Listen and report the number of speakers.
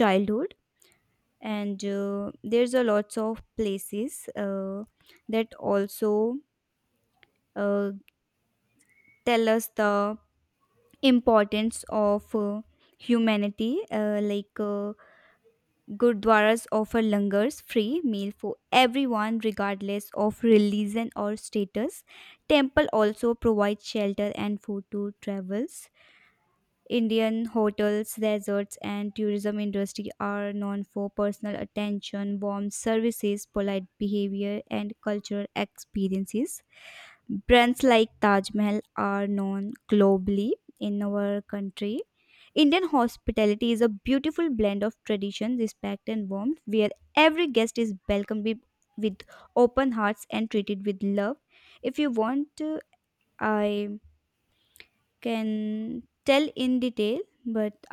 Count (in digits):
1